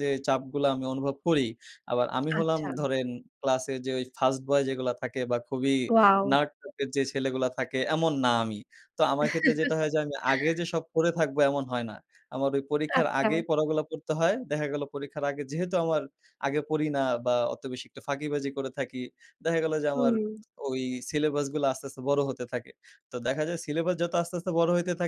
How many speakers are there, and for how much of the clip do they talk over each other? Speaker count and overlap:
2, about 4%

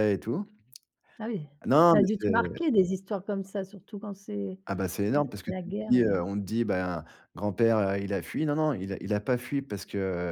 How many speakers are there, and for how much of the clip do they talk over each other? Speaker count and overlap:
2, about 16%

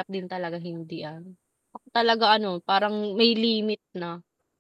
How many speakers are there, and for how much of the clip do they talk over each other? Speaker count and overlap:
1, no overlap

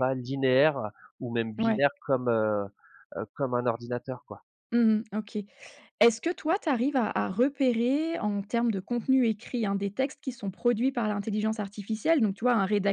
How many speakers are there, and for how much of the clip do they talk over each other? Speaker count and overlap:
2, about 2%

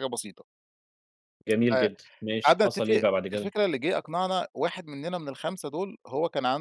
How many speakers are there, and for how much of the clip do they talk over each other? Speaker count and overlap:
2, about 19%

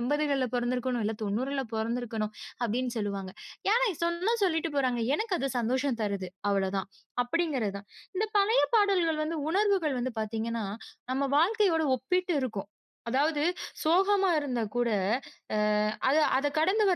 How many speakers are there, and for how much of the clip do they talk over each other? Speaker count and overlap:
1, no overlap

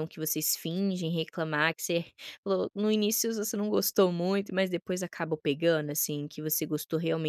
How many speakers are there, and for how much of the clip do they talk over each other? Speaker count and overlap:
1, no overlap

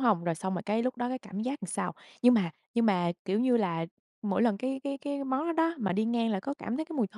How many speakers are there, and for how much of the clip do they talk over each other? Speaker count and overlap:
1, no overlap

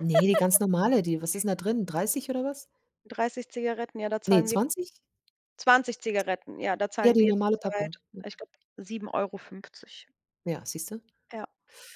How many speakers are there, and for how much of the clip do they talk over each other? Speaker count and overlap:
2, about 10%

